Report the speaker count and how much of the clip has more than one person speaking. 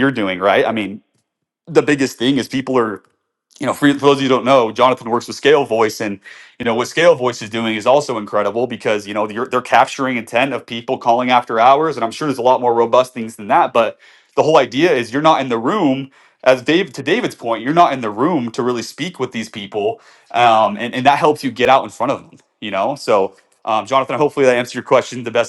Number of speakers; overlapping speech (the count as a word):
one, no overlap